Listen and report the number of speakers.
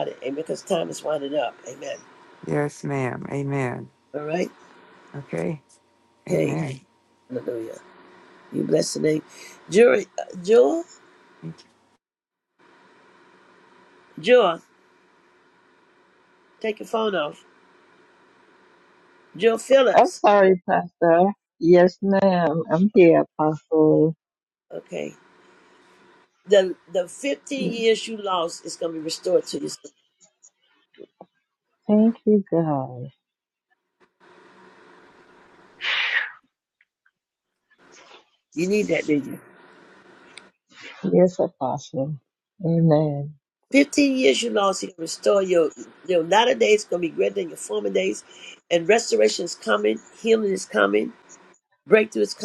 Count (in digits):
3